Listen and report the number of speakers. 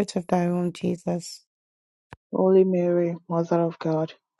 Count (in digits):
2